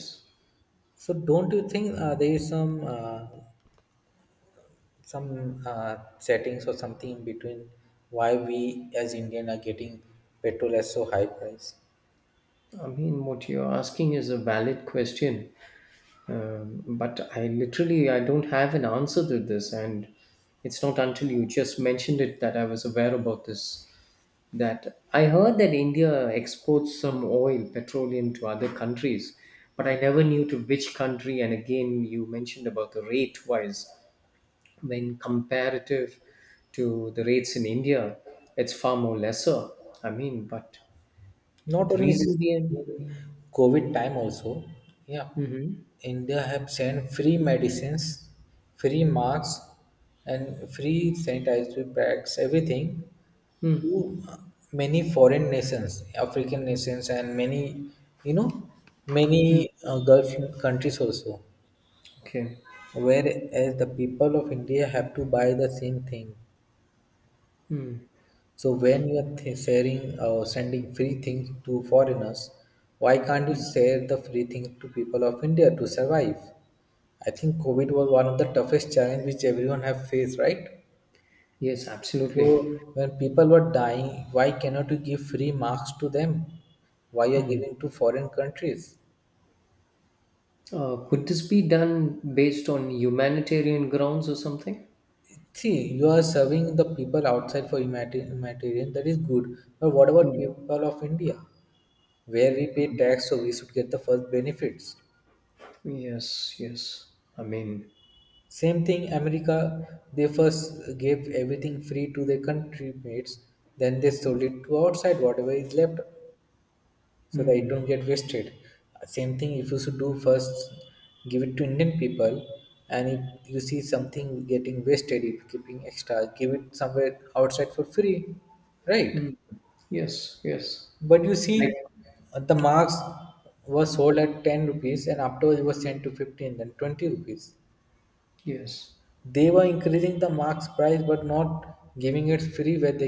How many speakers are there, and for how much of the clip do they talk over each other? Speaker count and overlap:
2, about 2%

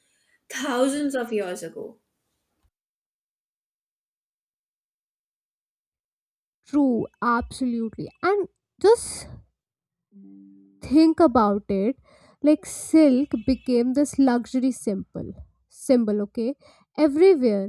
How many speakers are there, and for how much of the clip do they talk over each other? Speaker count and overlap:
2, no overlap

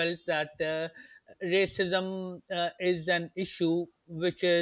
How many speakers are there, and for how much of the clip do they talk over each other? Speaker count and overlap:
1, no overlap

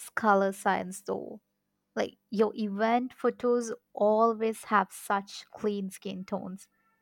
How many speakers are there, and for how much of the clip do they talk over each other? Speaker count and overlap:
1, no overlap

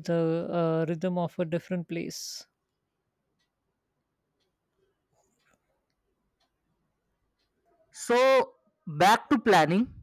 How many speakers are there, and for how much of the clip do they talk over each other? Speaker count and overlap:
2, no overlap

